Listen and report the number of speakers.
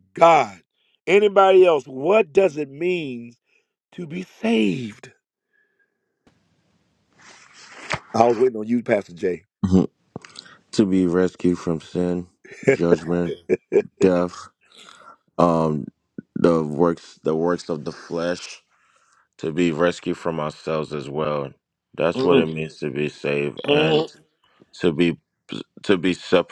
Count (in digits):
2